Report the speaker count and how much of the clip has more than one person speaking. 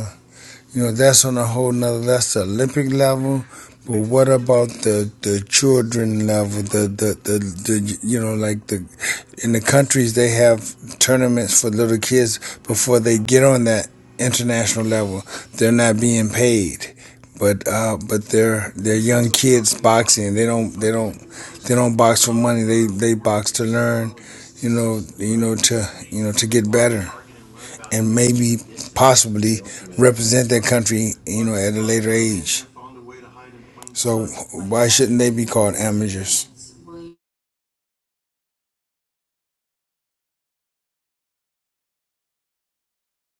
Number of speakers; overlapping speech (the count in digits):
1, no overlap